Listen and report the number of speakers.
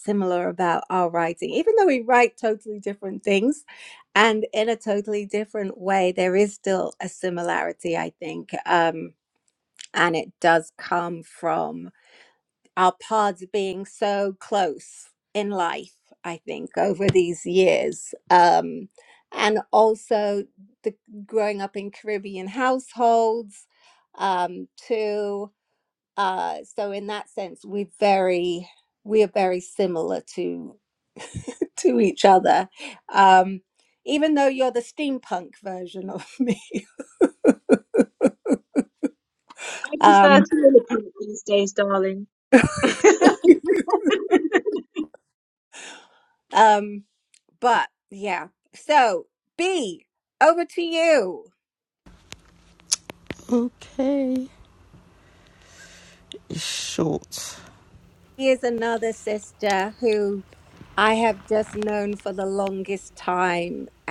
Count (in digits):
3